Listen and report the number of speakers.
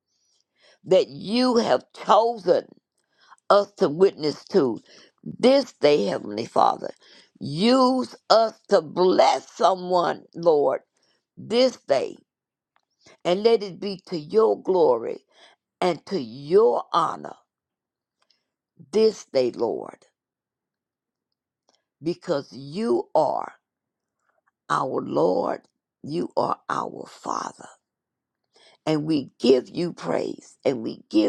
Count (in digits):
1